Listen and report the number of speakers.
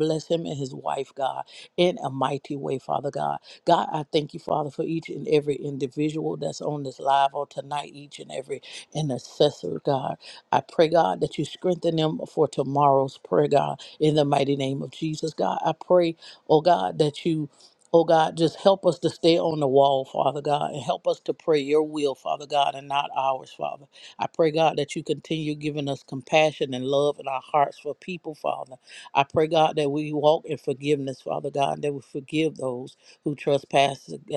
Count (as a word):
one